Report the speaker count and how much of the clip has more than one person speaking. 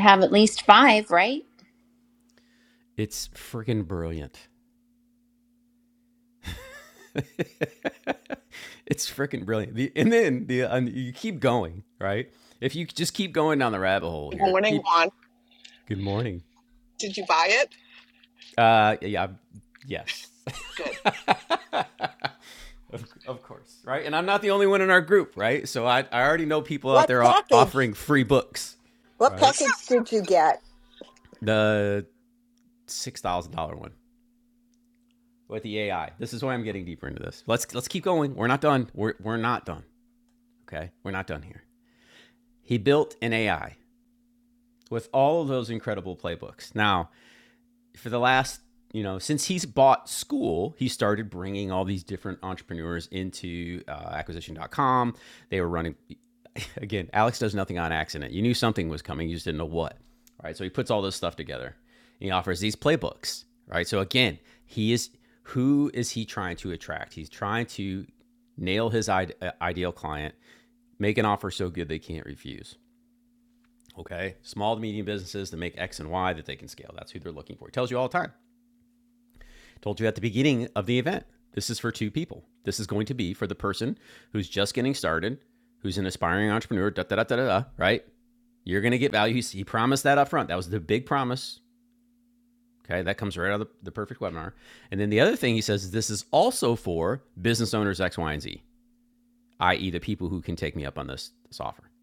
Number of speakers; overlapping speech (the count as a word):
four, about 2%